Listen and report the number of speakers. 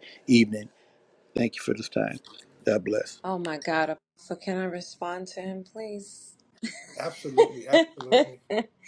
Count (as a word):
three